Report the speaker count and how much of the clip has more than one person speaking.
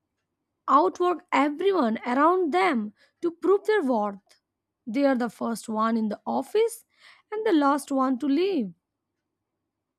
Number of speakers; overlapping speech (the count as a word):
one, no overlap